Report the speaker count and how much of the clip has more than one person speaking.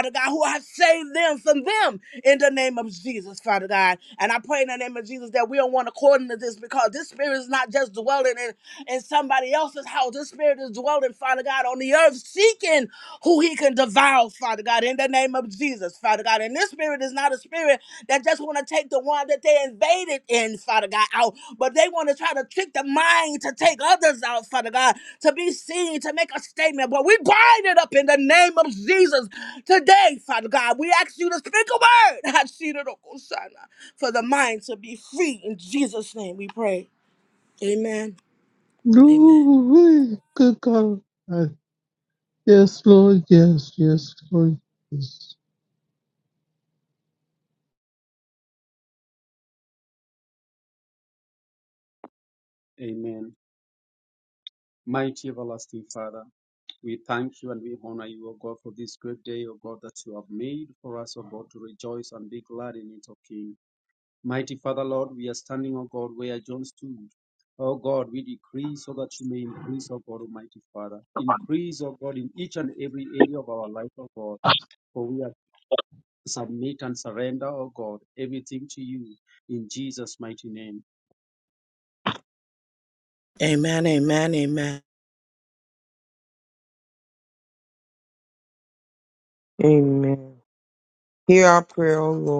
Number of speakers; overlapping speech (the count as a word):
four, under 1%